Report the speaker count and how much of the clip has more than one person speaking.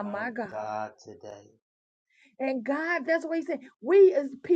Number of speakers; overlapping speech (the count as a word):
two, about 12%